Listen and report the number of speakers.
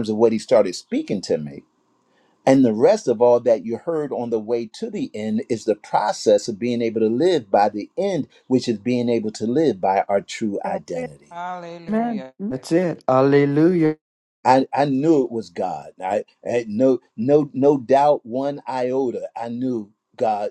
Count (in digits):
3